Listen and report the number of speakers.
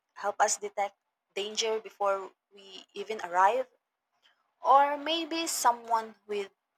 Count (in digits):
1